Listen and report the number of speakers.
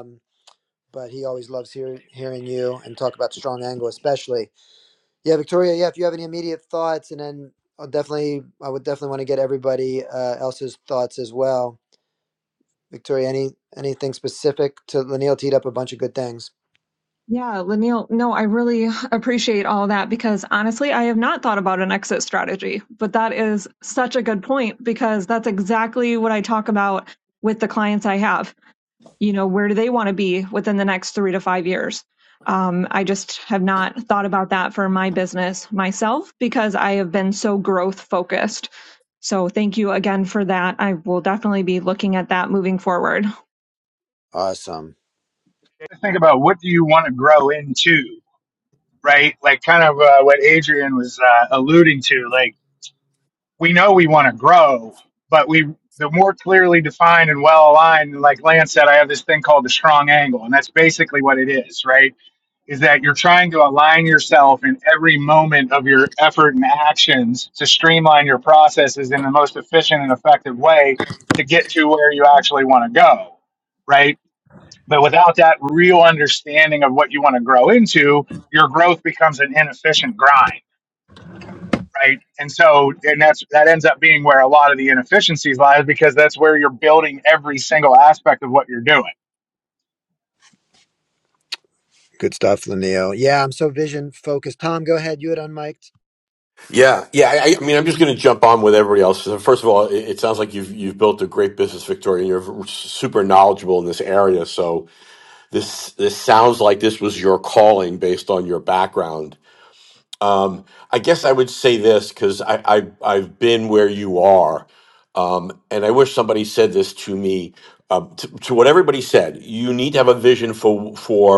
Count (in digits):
4